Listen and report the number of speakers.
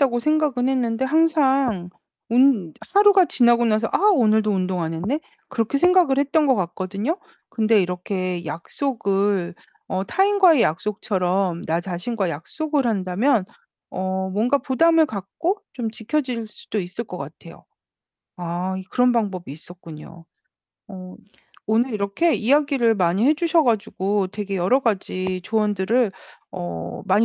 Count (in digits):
1